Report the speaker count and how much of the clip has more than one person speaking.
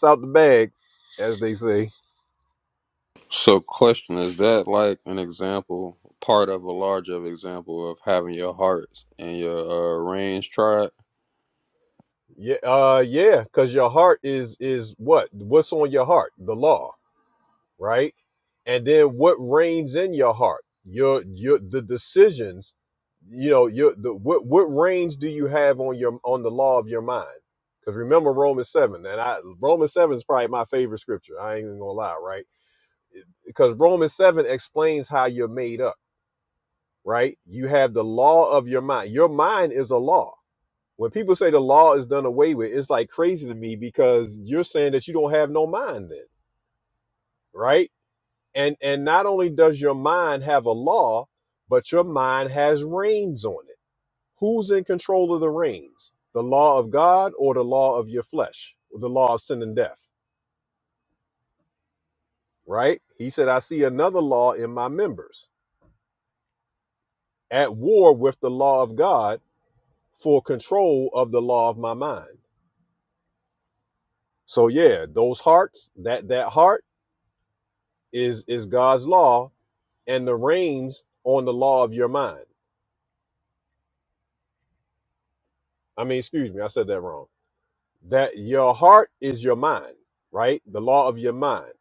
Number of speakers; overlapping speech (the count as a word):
two, no overlap